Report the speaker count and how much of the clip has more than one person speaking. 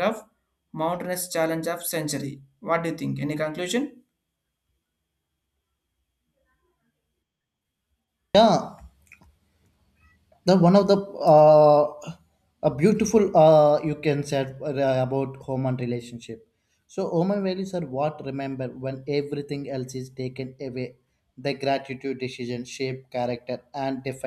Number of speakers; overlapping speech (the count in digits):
2, no overlap